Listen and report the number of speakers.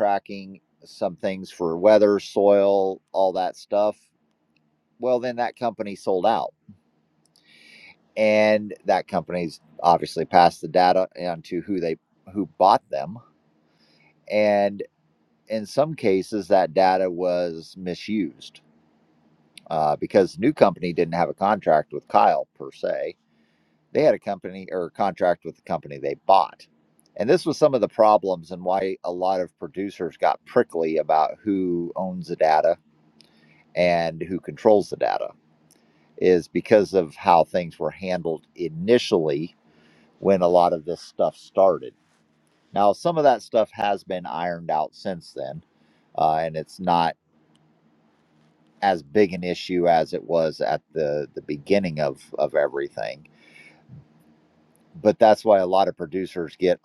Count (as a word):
one